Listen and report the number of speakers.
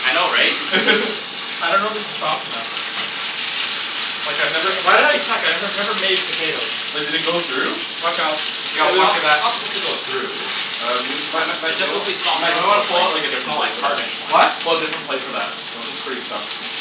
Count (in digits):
4